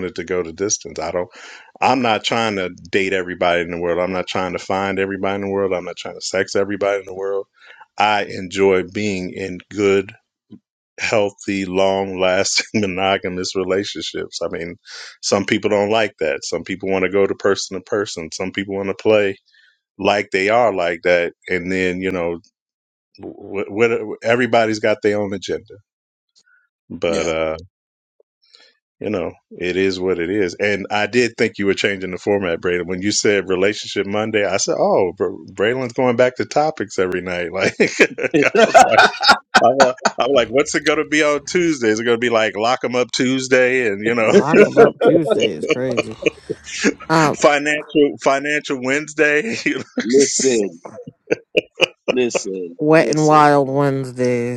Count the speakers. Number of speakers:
three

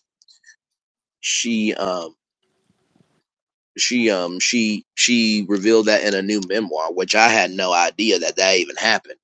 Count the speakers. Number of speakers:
one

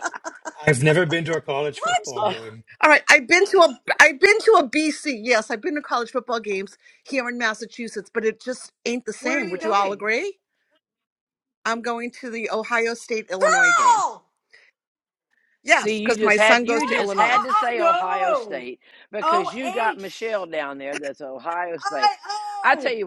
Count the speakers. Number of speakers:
four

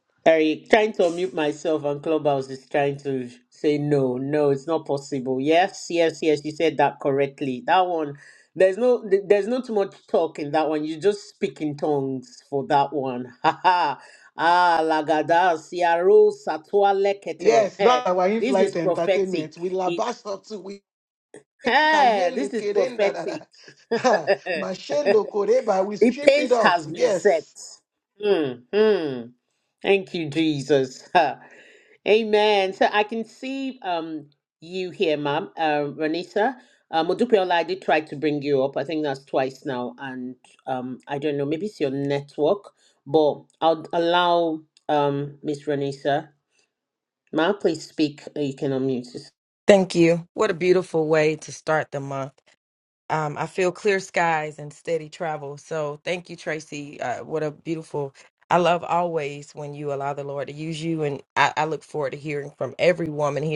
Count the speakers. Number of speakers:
three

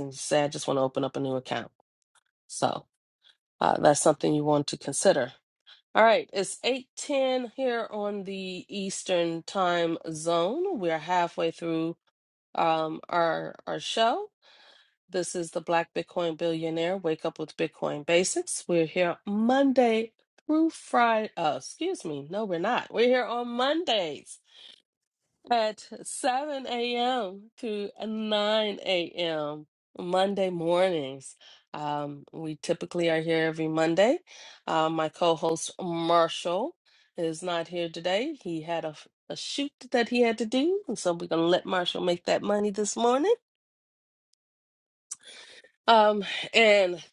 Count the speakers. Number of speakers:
one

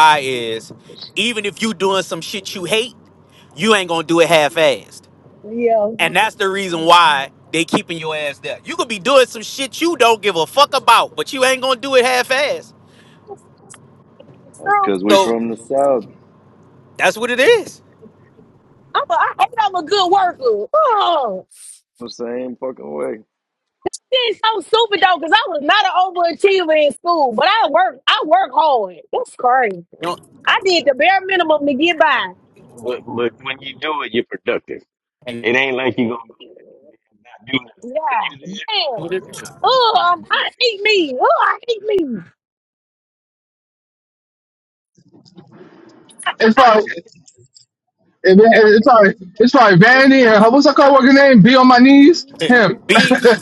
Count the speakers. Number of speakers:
five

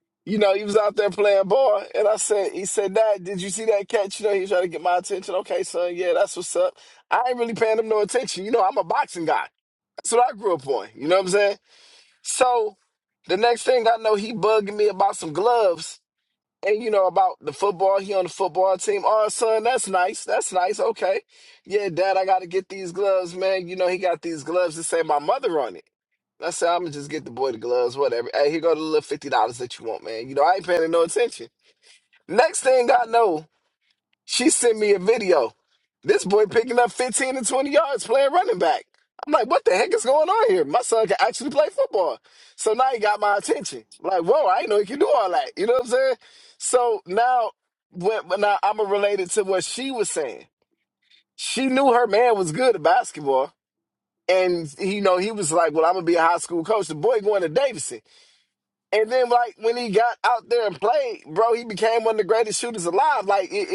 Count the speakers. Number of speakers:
one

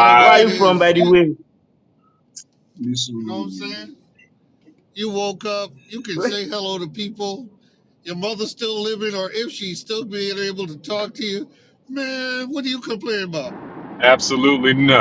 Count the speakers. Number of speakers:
three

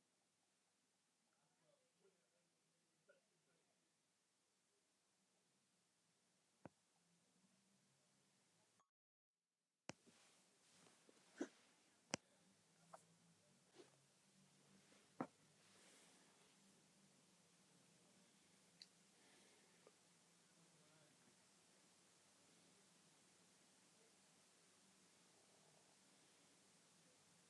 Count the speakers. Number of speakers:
zero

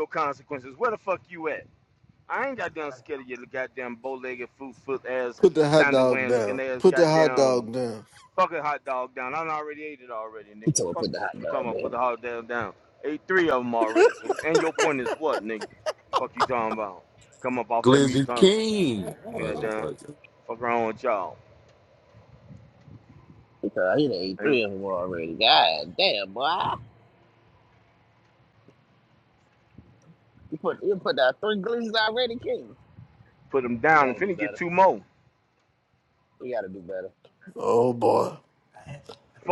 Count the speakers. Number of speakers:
four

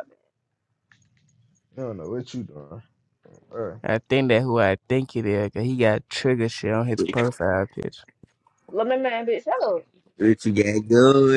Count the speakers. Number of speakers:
four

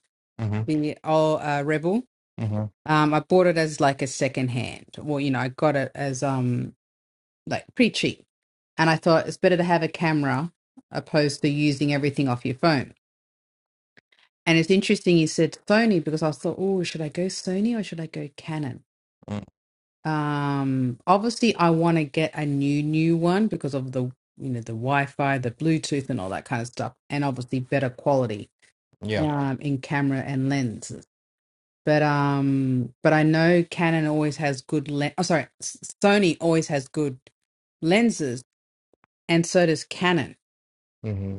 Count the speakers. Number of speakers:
two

